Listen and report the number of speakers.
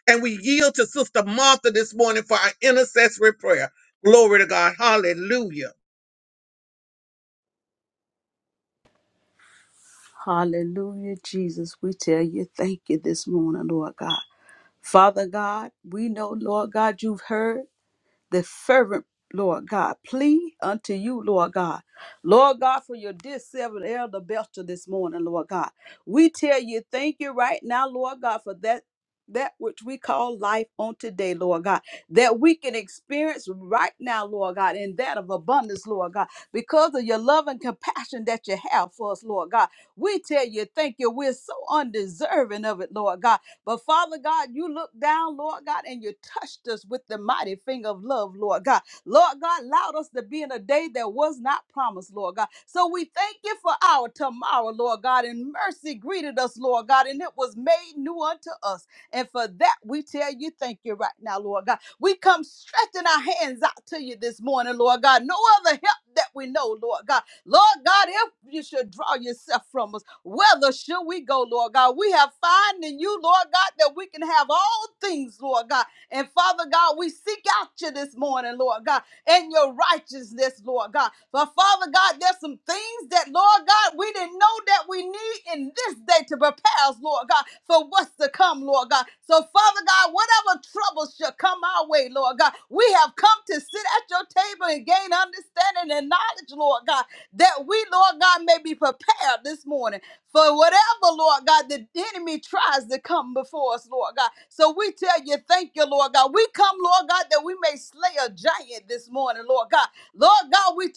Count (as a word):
two